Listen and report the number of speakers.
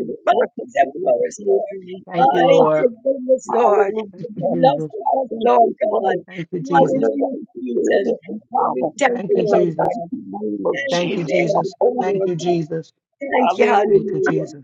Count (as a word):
three